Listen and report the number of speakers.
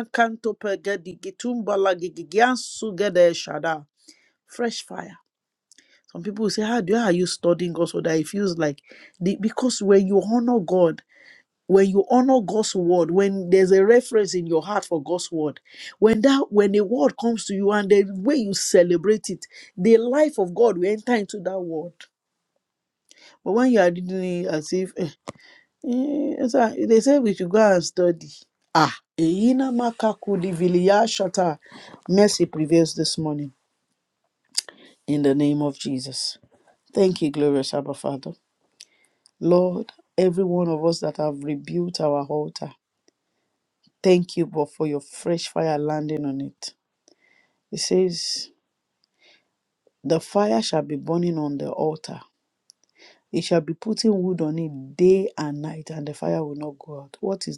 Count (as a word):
one